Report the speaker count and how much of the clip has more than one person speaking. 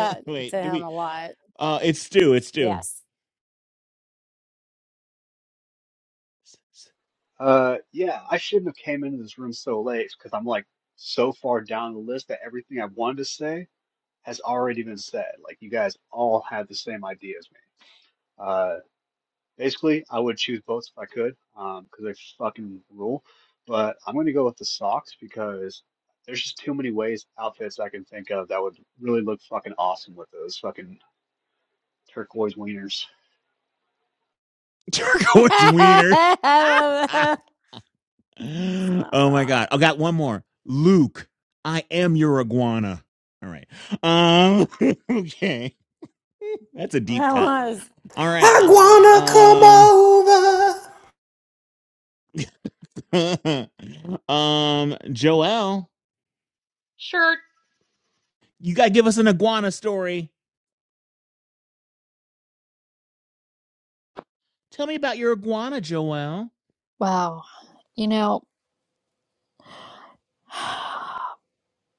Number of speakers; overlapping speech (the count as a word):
five, about 4%